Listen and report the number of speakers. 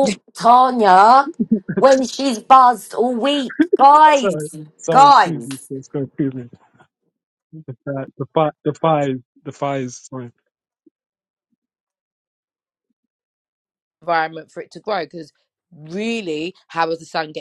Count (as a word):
three